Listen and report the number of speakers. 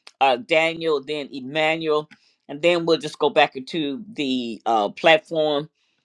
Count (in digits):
1